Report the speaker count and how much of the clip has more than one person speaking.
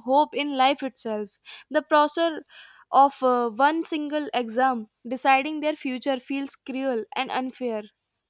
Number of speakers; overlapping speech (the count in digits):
1, no overlap